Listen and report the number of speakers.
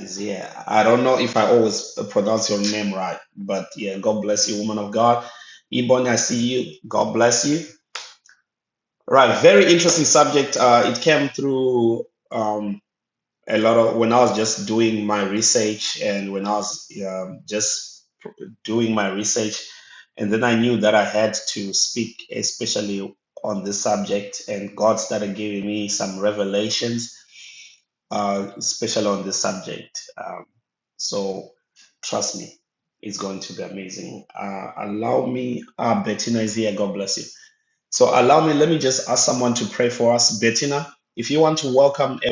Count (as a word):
one